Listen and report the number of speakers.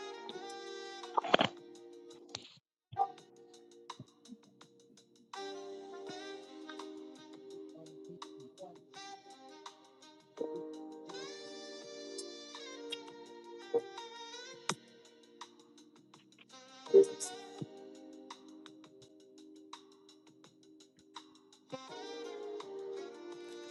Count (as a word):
zero